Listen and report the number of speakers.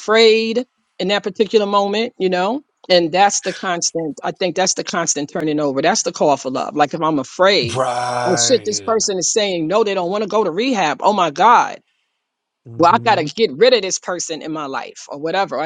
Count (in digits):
2